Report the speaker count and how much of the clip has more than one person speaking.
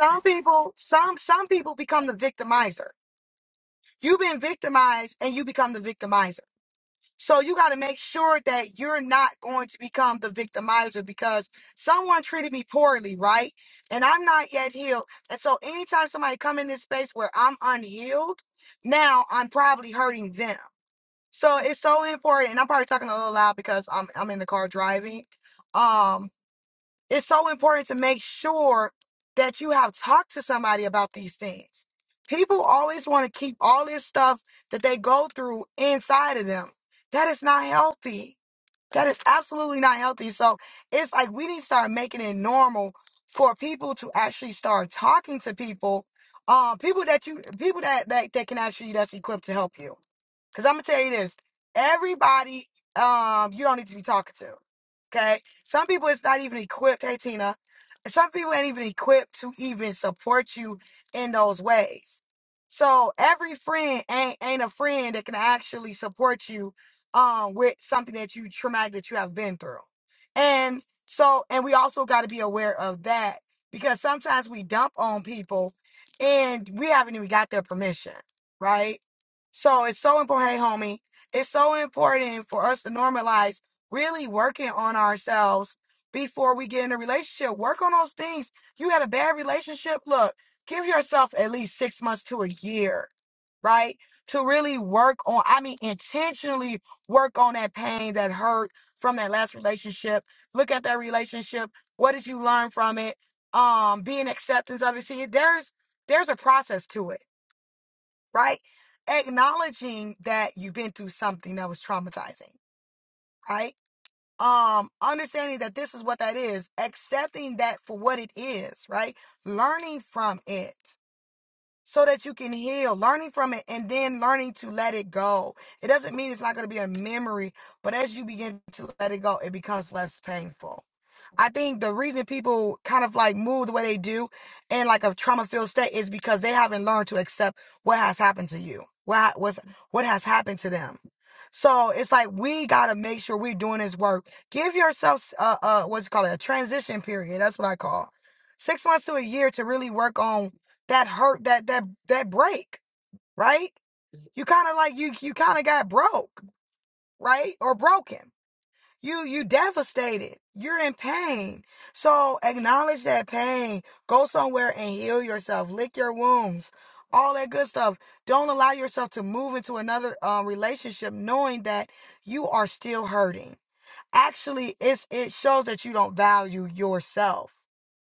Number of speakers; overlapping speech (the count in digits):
1, no overlap